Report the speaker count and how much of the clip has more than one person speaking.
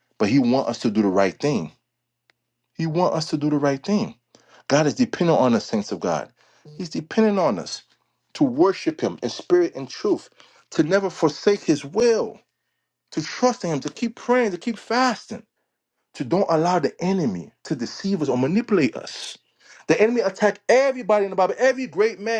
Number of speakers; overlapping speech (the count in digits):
1, no overlap